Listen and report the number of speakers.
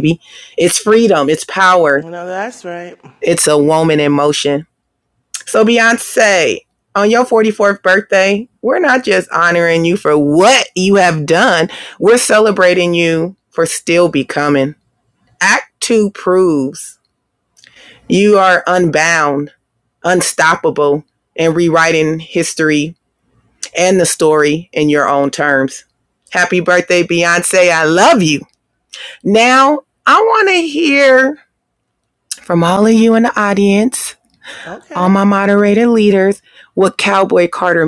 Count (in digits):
2